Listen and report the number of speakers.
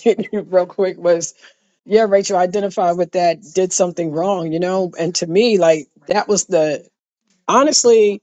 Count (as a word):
one